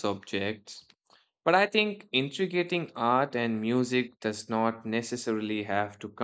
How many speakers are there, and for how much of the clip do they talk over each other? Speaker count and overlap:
1, no overlap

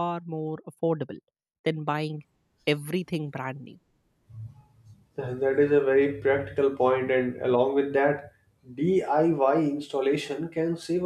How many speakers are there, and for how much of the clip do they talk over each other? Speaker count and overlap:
2, no overlap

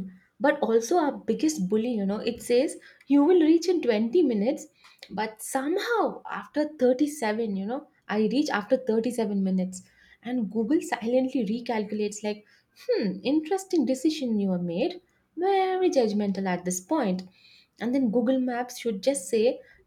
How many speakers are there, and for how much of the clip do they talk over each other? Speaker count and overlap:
1, no overlap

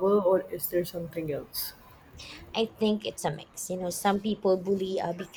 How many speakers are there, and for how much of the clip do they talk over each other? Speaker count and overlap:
2, no overlap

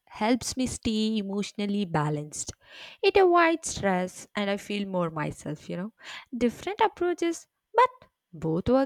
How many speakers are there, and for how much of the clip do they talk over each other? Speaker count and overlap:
1, no overlap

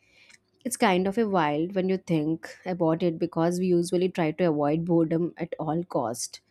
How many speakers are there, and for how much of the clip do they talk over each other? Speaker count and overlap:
1, no overlap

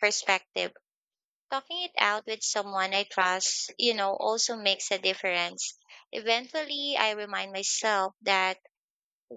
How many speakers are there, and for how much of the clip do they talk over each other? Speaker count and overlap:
1, no overlap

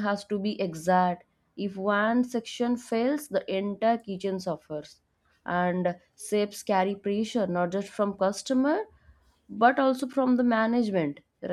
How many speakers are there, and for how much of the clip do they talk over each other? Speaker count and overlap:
1, no overlap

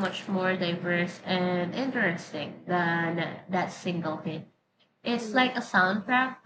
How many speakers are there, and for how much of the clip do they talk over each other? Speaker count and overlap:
1, no overlap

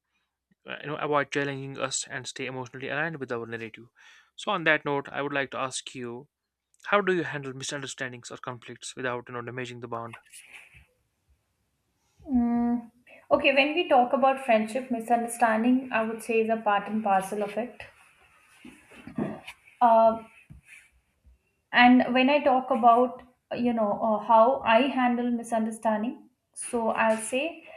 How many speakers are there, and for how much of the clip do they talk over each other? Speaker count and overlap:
2, no overlap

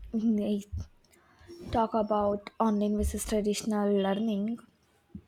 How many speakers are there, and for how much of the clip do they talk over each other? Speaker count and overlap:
1, no overlap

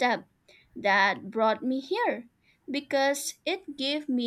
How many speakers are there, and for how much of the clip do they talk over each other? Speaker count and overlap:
1, no overlap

